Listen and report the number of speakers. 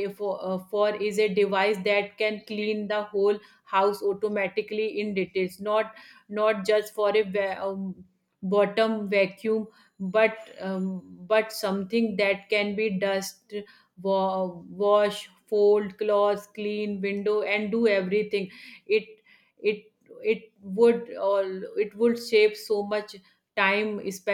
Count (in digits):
1